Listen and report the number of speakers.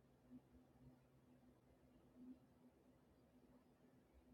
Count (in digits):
0